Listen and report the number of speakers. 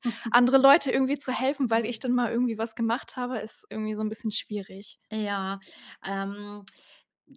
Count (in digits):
2